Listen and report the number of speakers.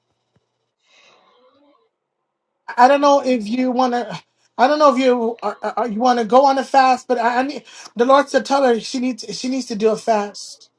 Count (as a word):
one